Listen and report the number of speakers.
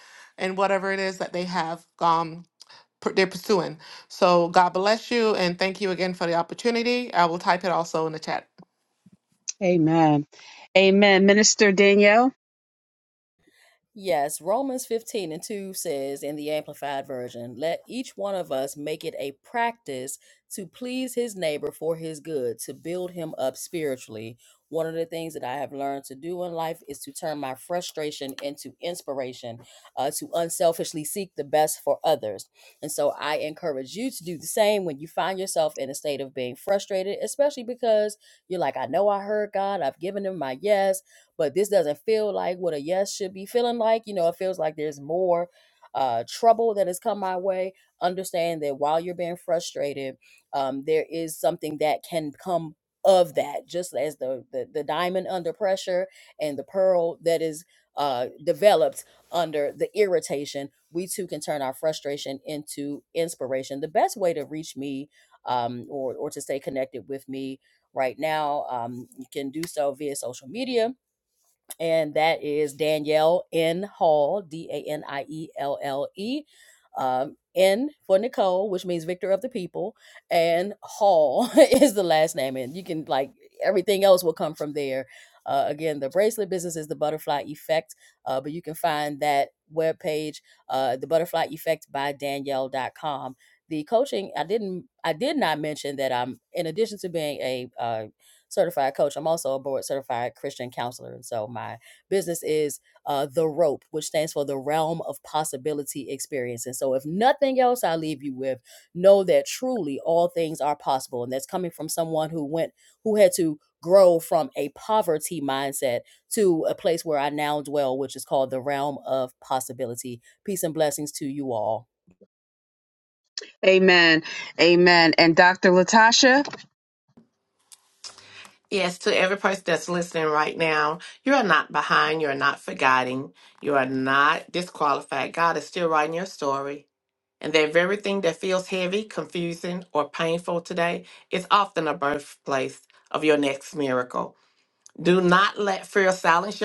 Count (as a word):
four